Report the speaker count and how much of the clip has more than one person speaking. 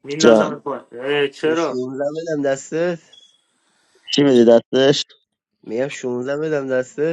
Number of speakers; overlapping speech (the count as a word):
three, about 10%